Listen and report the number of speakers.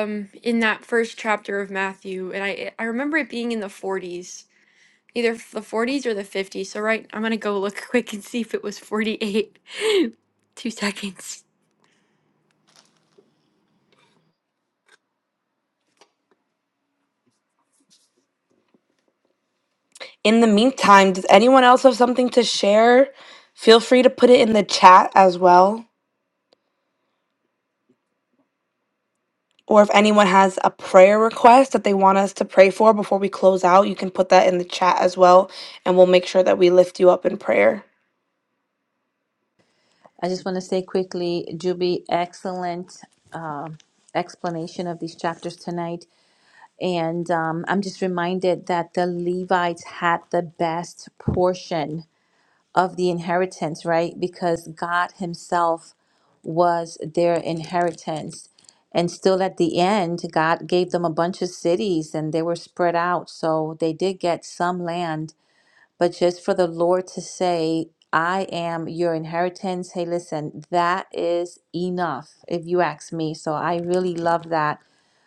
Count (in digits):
3